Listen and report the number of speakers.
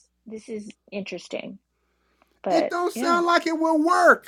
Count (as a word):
two